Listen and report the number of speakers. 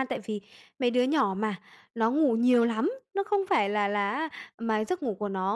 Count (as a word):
one